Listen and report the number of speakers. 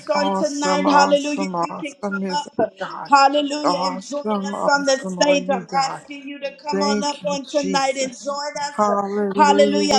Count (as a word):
two